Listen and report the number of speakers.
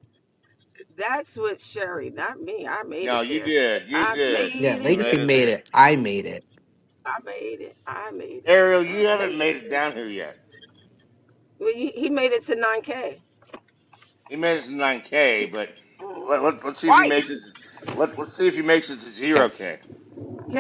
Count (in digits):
3